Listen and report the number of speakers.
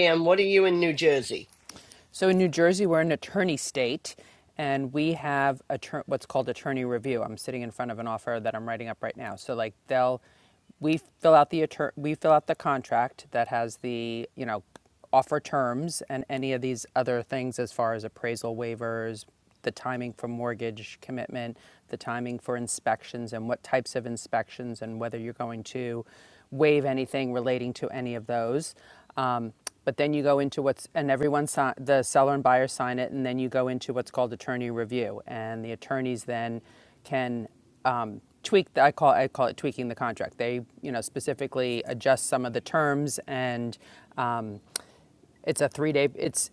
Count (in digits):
2